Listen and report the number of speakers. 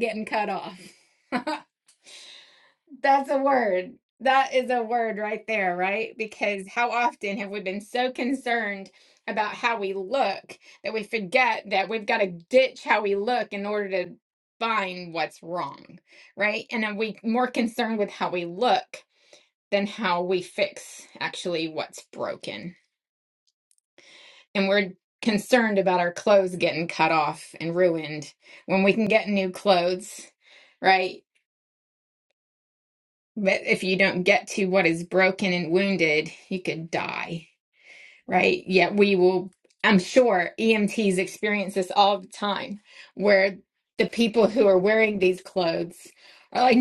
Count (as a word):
one